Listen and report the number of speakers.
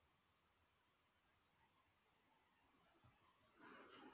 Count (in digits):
0